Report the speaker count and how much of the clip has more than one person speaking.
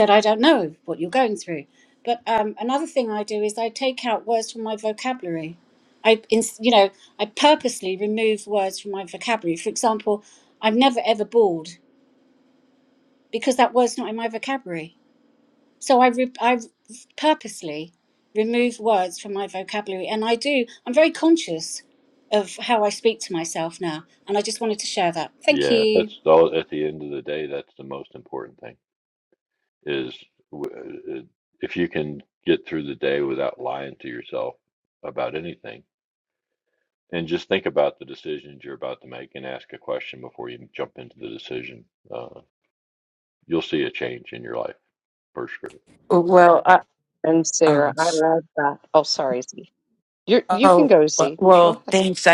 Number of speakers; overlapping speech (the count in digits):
4, about 3%